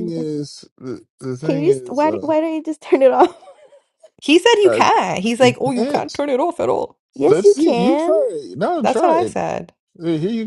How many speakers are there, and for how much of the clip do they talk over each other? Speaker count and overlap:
3, about 32%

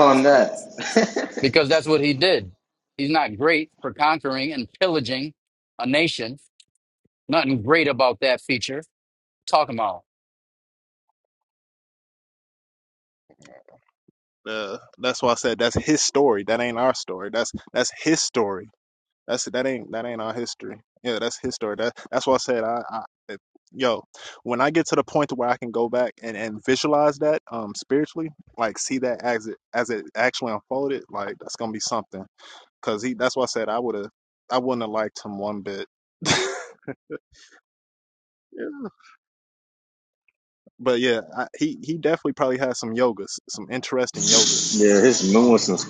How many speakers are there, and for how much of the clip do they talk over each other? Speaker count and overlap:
3, about 1%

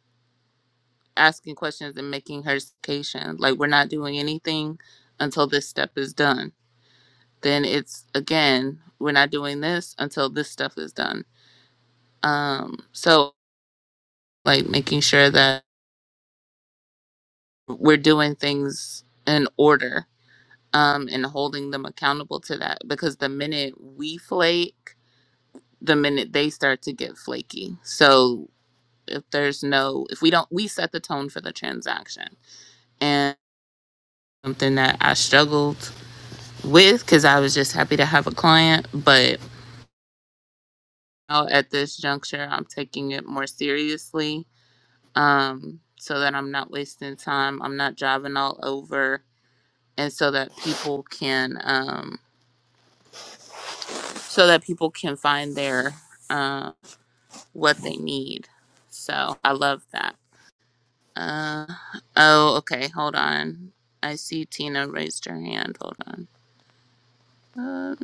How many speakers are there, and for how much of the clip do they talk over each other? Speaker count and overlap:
1, no overlap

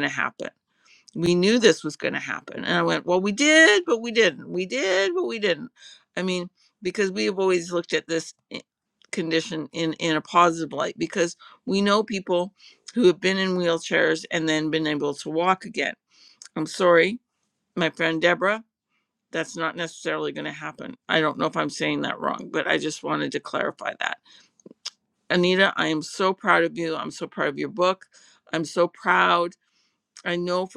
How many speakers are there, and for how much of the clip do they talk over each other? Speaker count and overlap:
1, no overlap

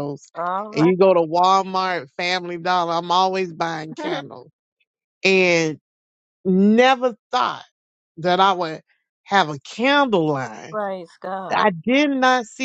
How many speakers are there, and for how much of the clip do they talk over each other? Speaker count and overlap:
2, about 3%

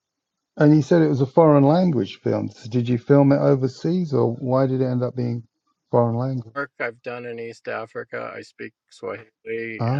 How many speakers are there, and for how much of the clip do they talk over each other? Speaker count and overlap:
2, about 2%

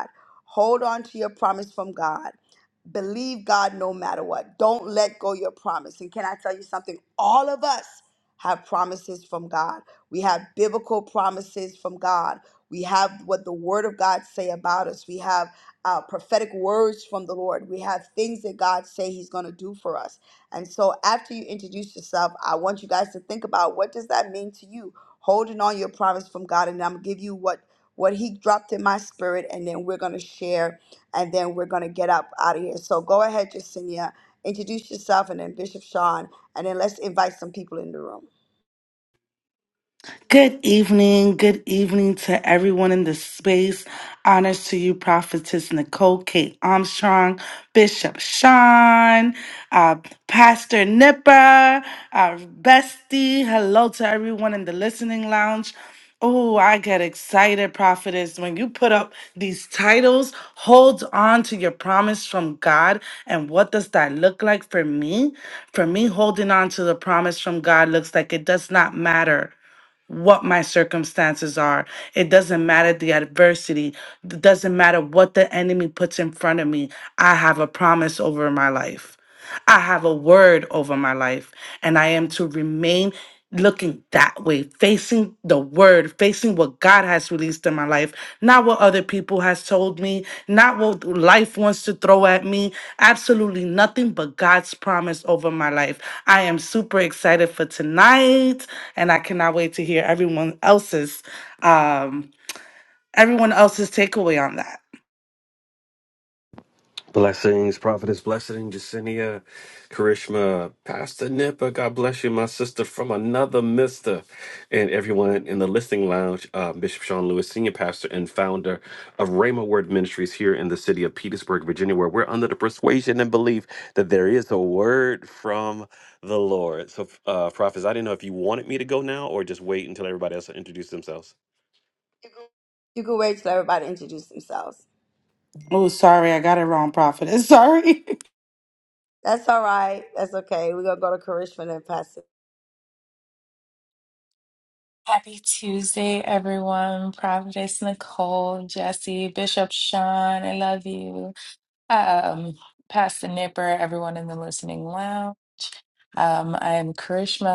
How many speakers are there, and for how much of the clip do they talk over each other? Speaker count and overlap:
4, no overlap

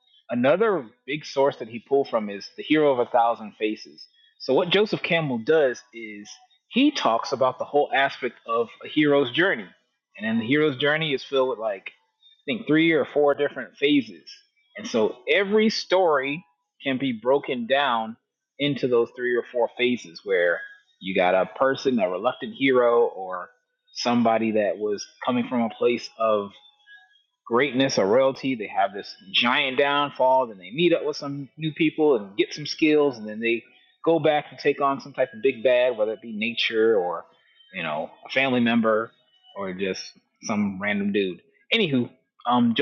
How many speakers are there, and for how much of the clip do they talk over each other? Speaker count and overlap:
1, no overlap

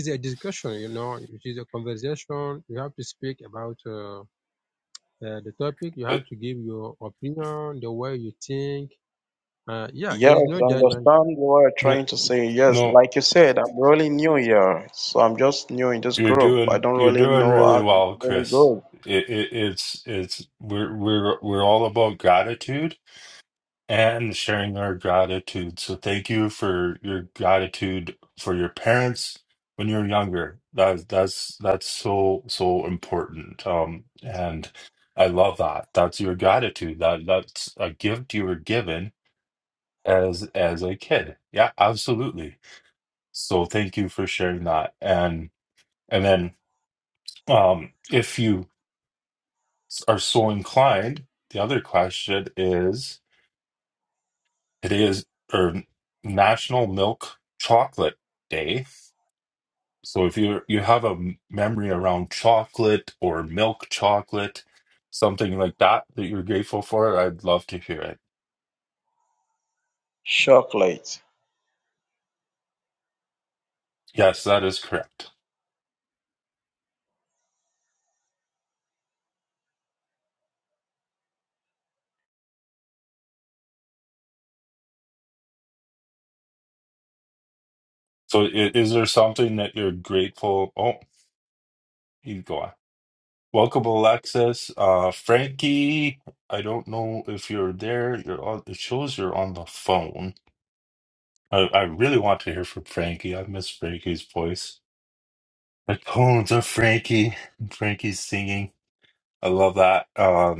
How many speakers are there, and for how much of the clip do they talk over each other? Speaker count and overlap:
3, about 4%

